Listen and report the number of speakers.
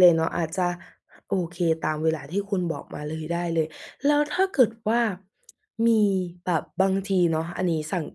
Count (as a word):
one